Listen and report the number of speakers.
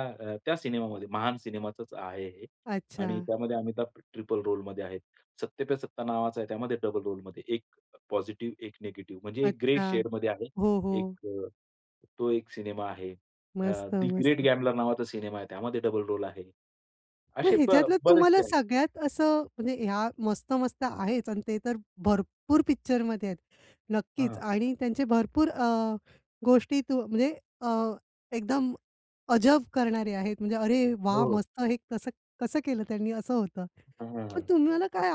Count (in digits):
2